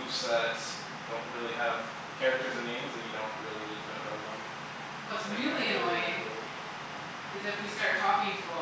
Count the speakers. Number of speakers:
two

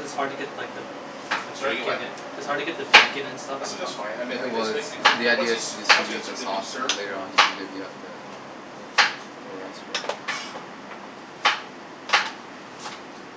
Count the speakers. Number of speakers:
three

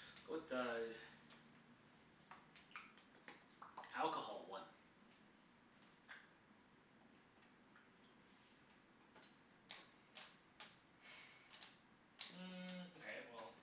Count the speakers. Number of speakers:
two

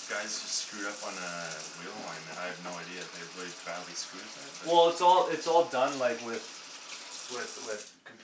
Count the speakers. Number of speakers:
two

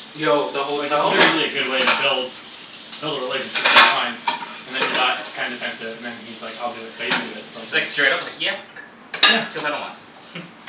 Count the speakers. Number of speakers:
three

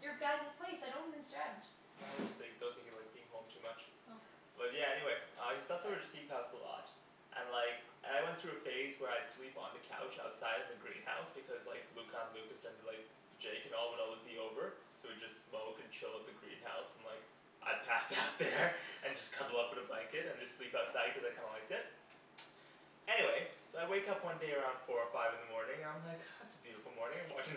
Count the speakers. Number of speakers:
two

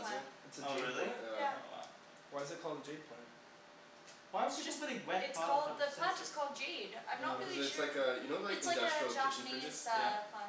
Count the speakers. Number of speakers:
four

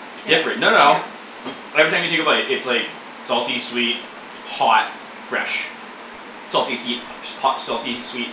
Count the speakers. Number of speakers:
one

